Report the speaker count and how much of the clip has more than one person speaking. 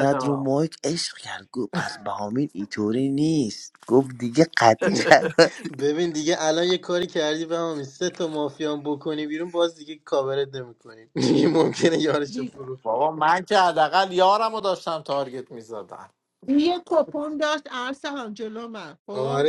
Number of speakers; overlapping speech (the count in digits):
4, about 6%